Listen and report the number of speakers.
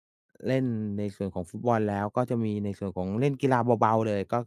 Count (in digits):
1